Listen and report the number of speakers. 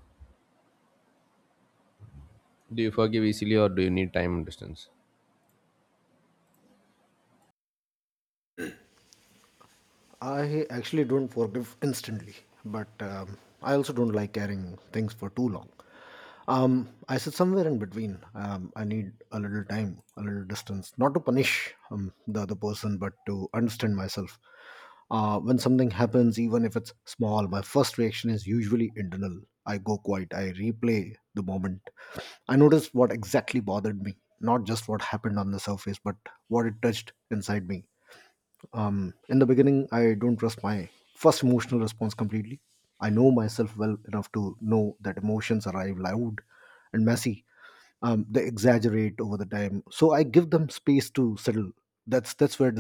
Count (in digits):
2